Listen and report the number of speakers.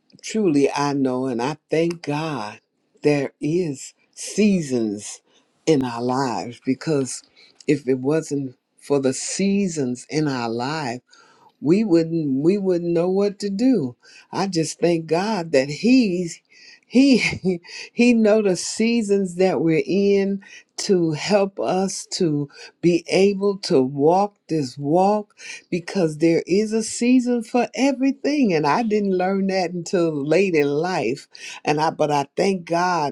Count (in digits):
1